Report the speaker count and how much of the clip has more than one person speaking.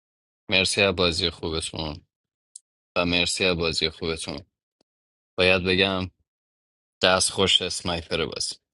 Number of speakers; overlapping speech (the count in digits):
1, no overlap